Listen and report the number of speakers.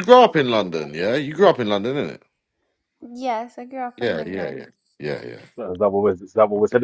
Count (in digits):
3